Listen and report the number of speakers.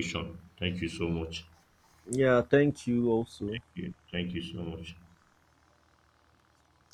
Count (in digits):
2